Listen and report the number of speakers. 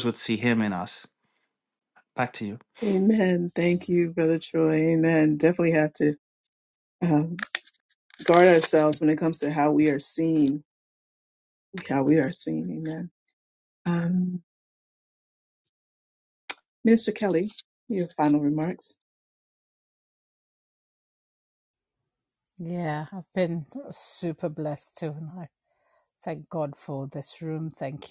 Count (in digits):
3